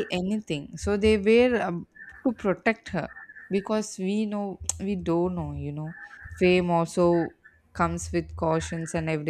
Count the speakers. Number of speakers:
1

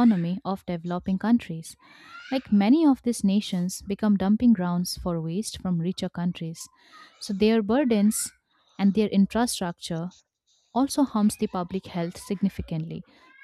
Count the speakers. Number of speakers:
1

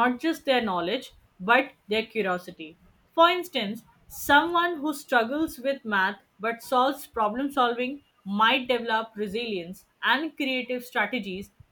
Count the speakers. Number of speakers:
1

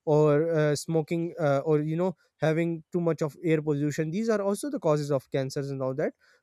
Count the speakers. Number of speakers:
1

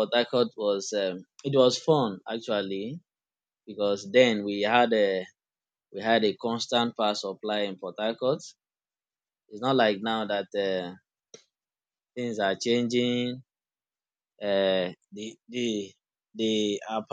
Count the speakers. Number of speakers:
1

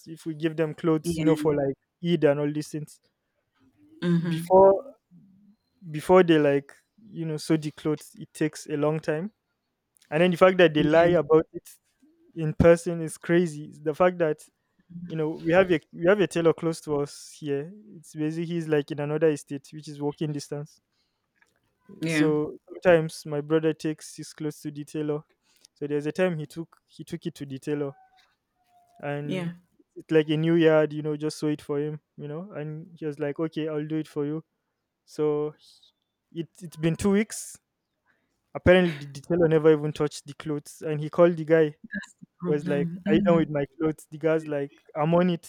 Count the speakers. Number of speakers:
2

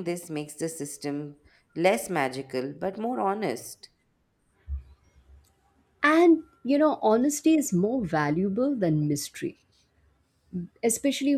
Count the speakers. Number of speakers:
2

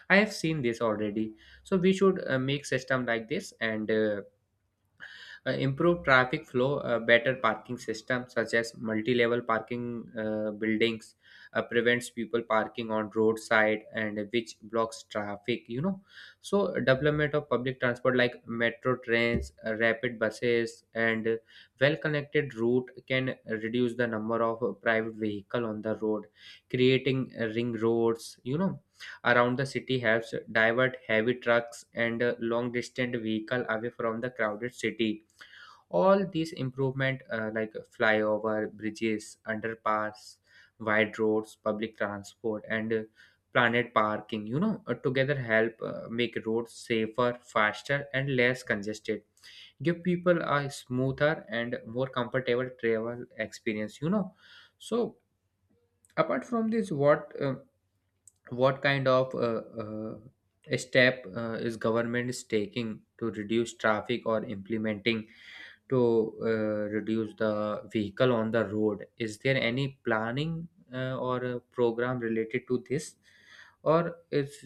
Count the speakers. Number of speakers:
1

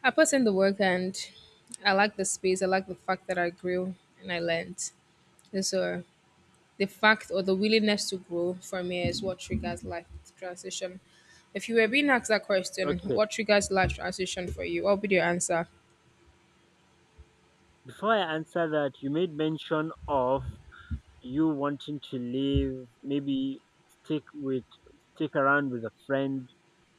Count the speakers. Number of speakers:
2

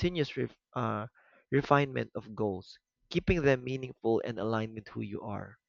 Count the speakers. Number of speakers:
1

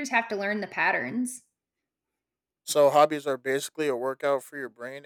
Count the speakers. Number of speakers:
2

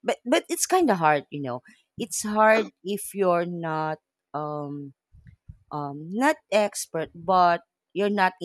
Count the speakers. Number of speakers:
1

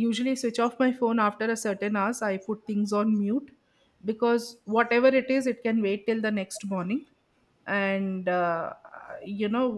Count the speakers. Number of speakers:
1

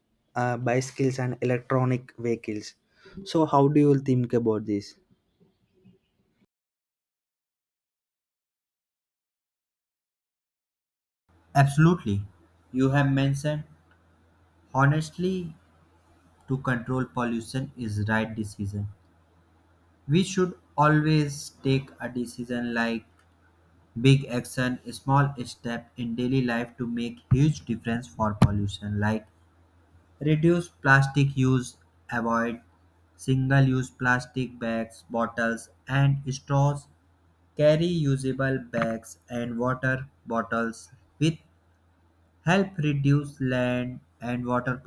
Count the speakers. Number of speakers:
2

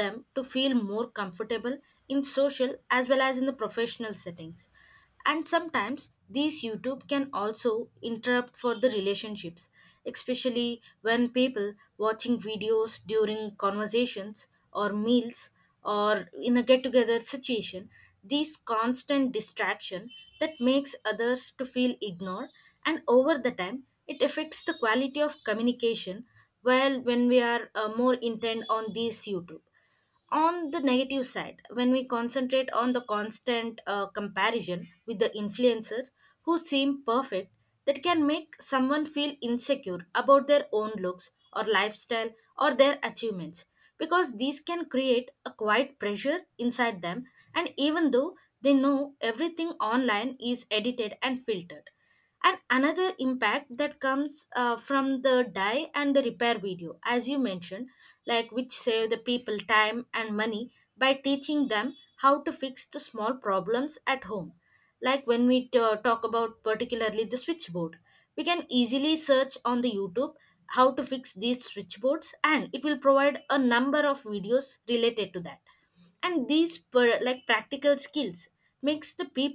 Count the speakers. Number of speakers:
1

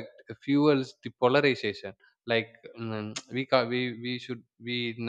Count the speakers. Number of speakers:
1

